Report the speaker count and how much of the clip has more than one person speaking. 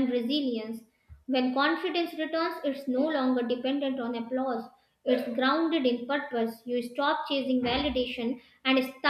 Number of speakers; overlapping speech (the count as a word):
one, no overlap